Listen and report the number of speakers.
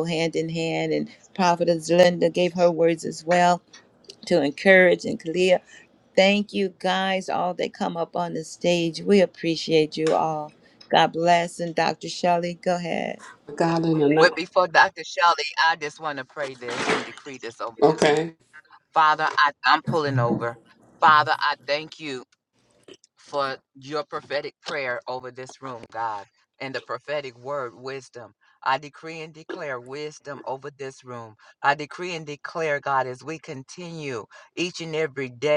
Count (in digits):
3